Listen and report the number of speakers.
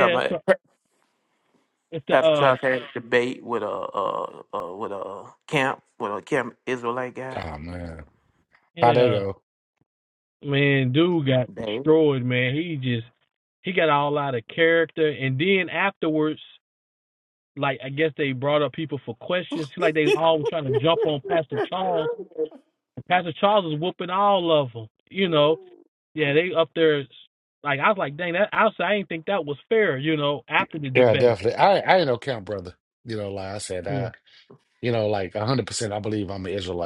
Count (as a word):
three